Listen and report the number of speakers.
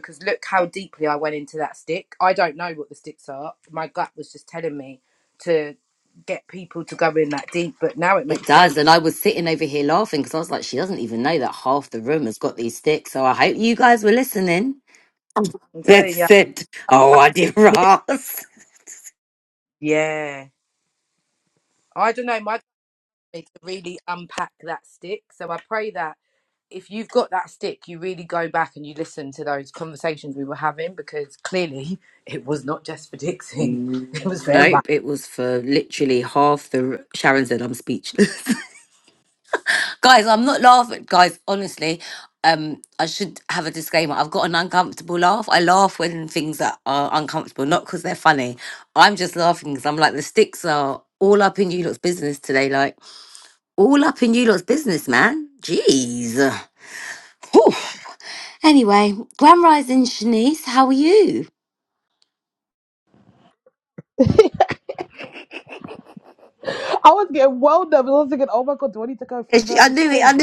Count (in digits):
3